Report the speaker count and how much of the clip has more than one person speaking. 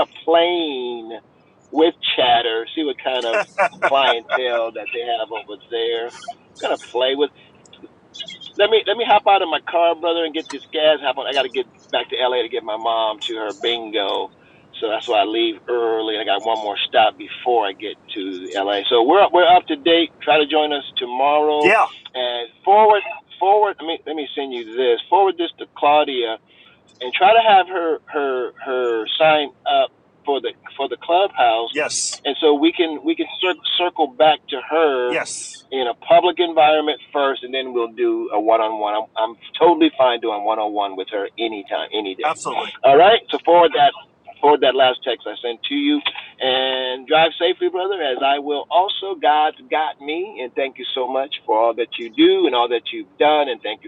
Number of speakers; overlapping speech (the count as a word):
two, under 1%